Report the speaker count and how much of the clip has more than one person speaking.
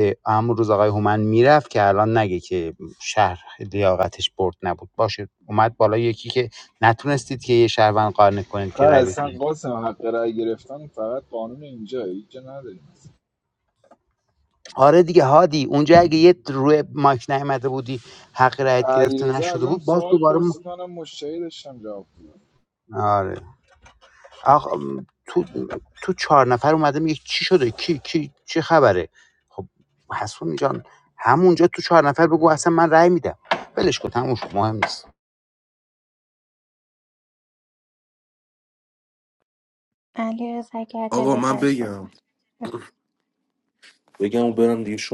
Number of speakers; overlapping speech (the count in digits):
4, about 7%